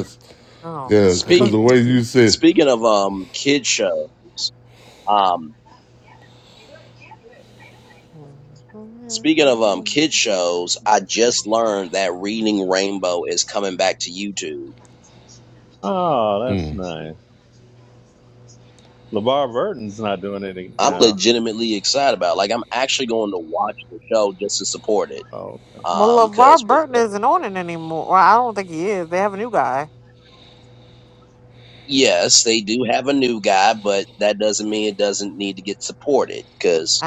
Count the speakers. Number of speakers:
four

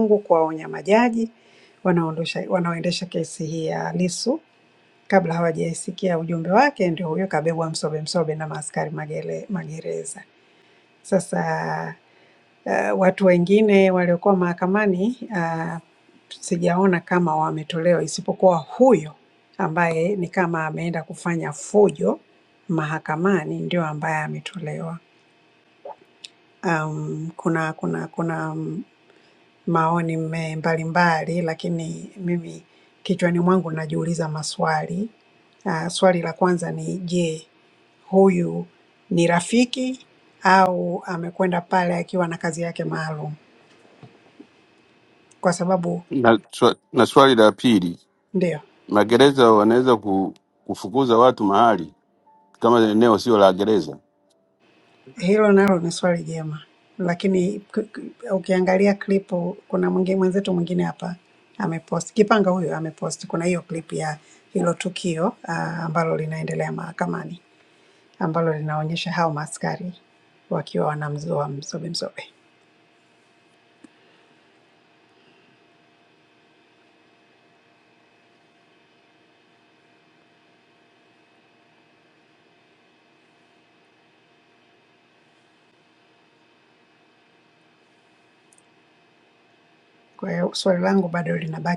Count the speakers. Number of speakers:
two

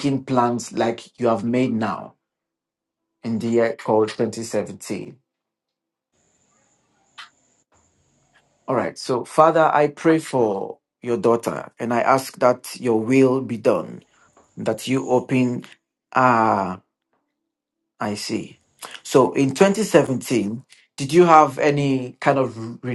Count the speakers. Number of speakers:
one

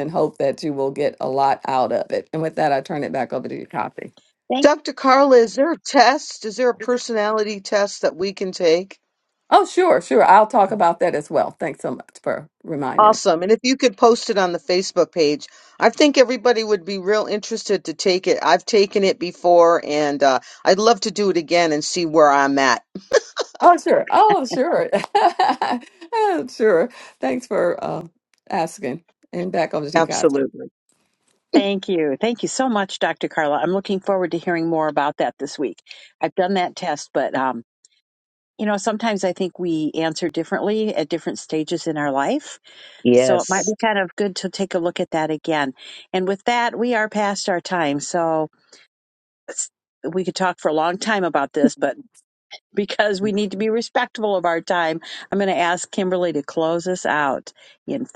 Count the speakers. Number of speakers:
three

